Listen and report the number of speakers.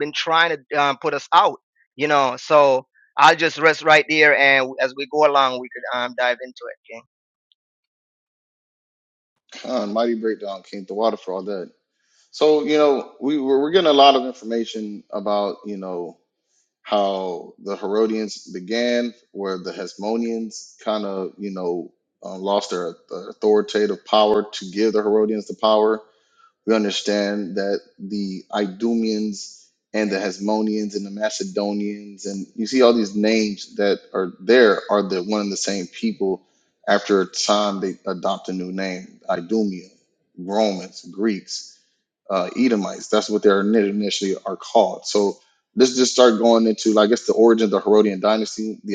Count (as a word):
two